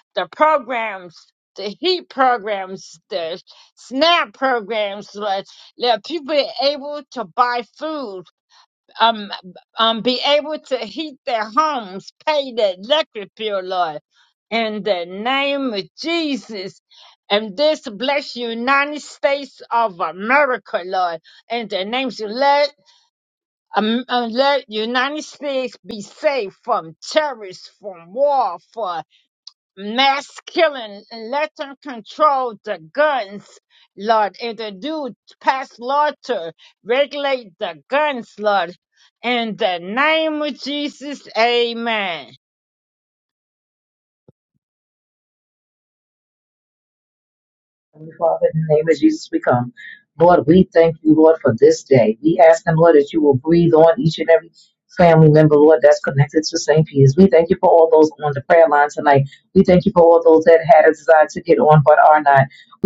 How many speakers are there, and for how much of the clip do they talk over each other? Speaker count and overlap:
2, no overlap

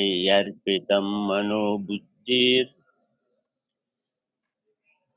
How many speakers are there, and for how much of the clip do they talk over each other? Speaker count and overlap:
1, no overlap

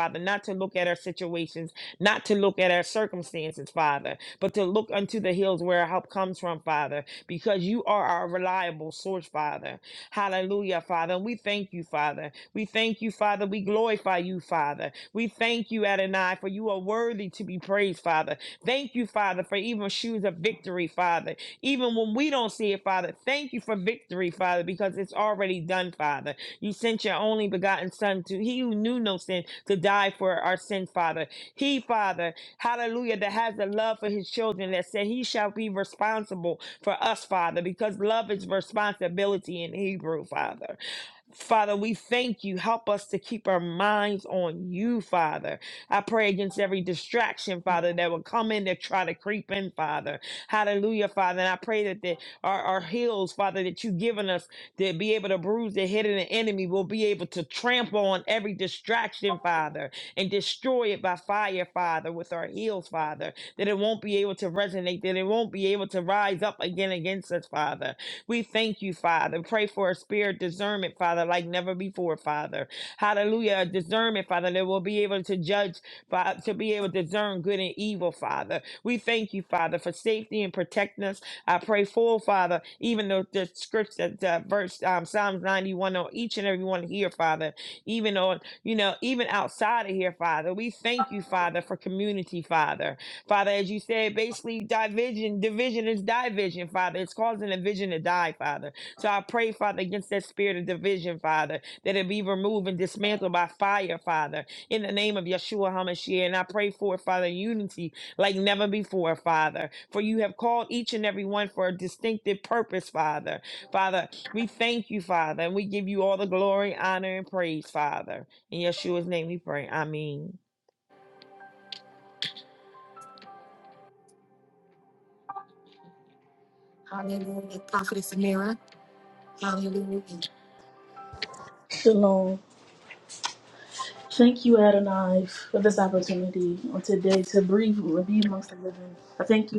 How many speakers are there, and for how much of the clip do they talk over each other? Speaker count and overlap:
3, no overlap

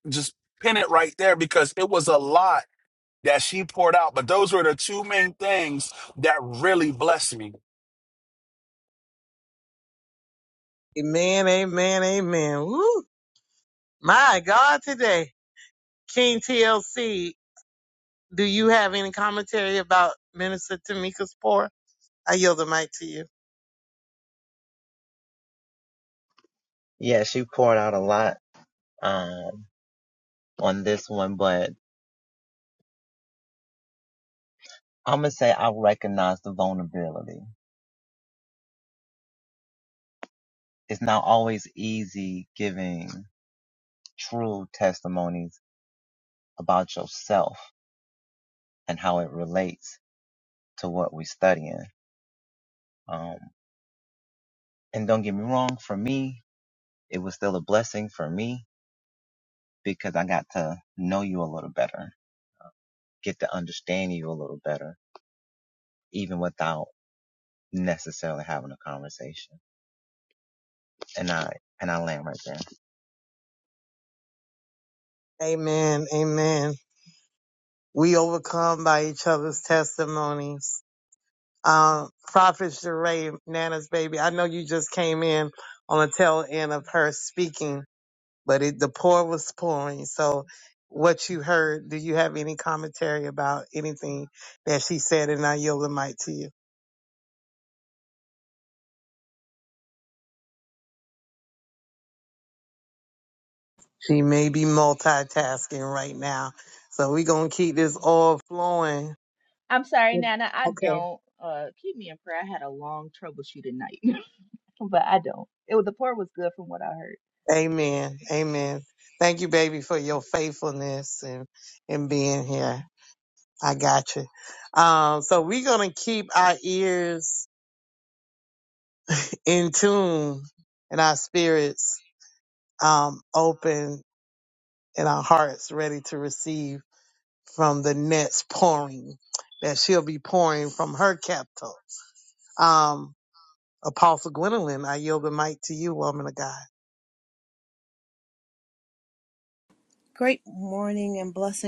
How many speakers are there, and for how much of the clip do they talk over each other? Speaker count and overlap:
5, under 1%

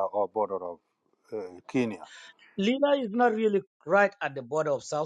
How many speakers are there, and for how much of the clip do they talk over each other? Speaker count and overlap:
2, no overlap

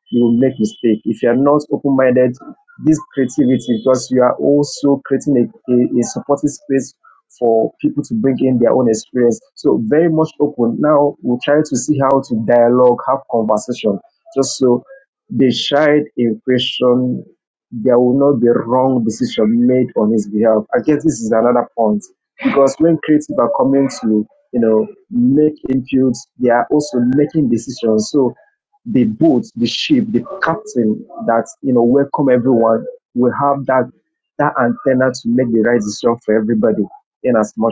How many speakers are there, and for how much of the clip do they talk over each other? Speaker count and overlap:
1, no overlap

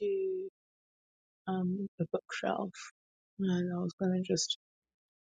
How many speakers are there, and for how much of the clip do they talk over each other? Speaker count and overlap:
1, no overlap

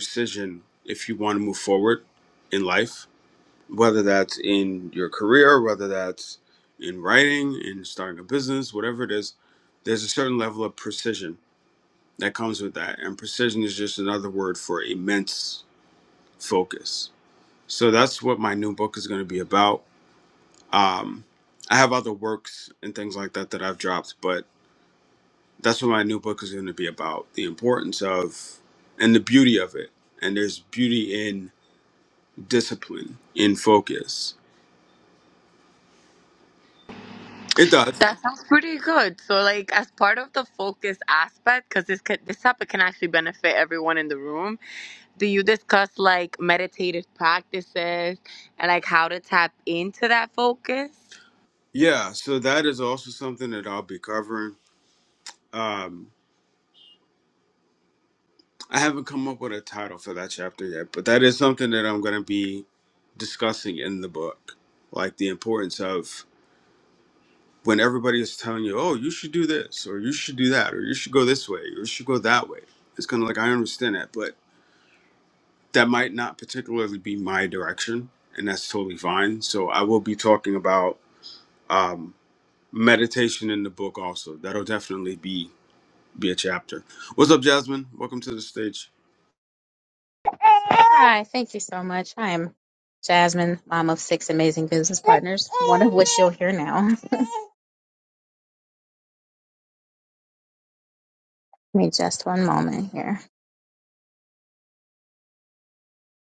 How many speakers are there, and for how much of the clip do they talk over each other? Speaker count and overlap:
3, under 1%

